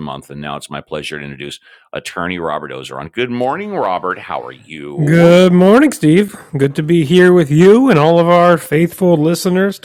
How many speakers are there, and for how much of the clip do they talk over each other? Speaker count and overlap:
2, about 4%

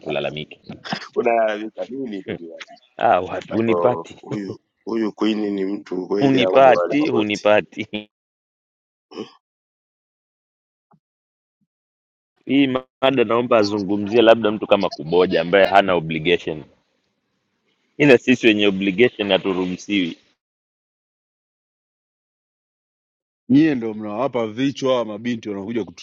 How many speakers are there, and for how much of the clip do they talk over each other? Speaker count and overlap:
3, about 7%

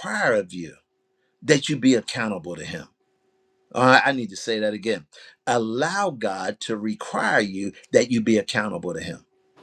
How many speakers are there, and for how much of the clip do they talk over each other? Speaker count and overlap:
1, no overlap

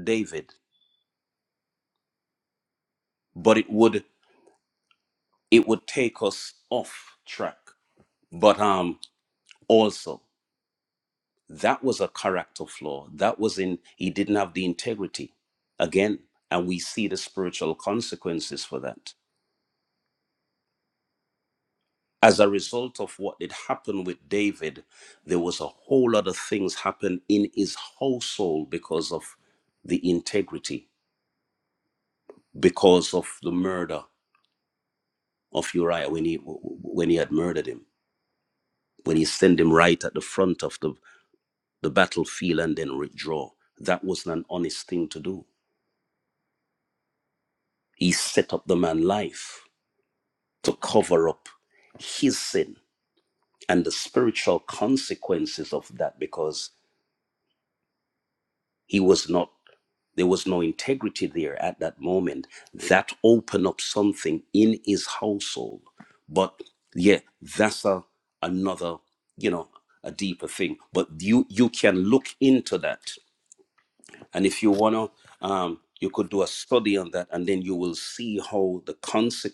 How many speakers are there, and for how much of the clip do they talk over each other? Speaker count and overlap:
1, no overlap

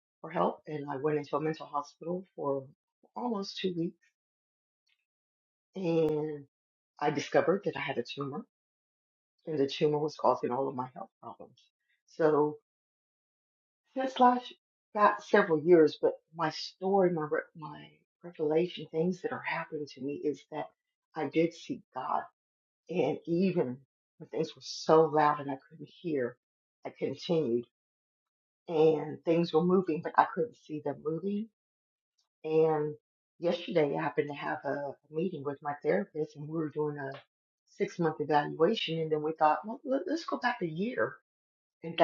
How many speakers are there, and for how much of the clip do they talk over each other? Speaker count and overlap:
1, no overlap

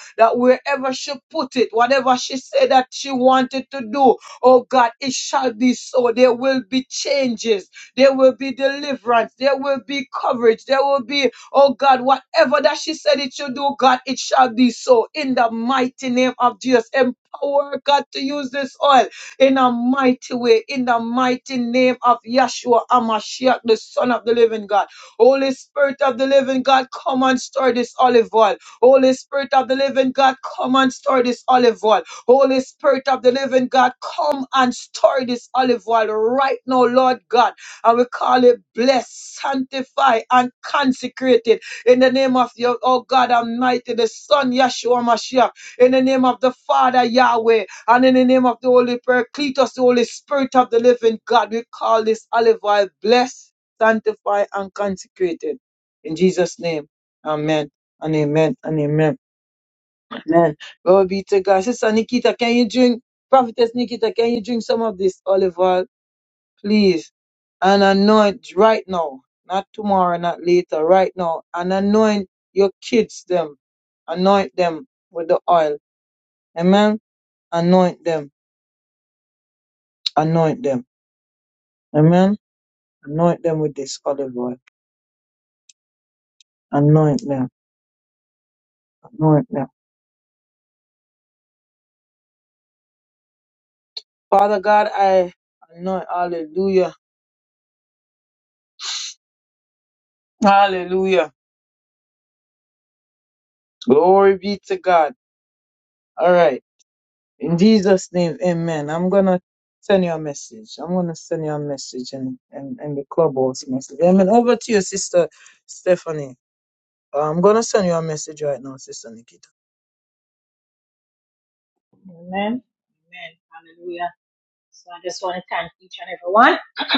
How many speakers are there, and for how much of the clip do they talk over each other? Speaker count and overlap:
2, no overlap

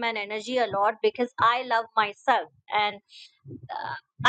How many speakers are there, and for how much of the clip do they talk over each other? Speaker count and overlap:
1, no overlap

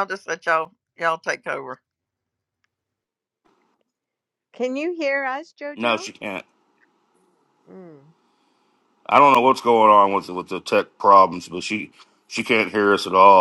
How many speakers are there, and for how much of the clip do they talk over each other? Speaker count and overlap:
3, about 2%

